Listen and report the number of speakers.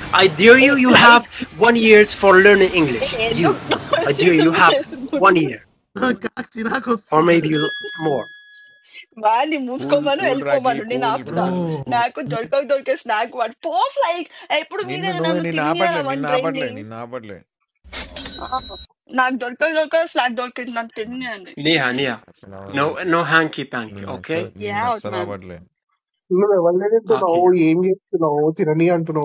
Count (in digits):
5